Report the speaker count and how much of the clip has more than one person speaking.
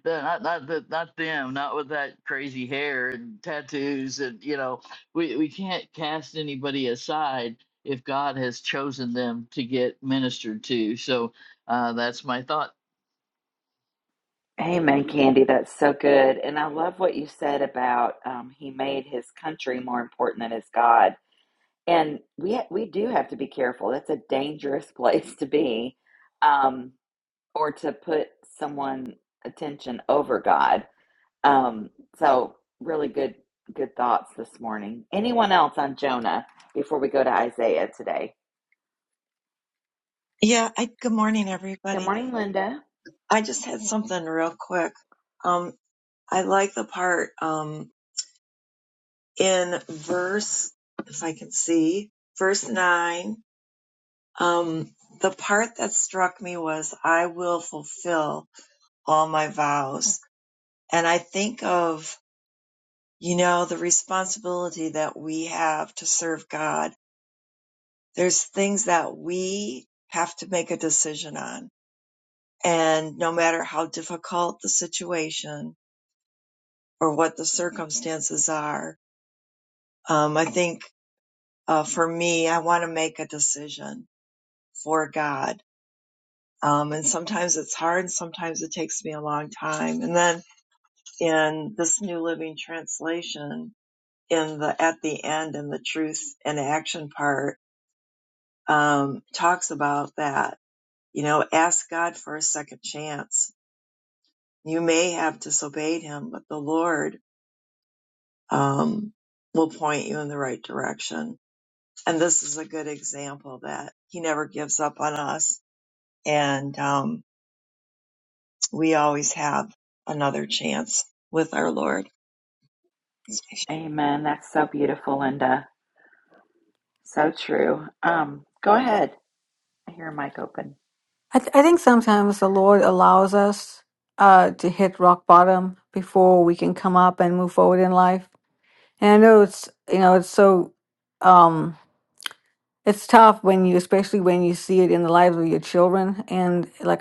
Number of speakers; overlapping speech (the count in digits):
4, under 1%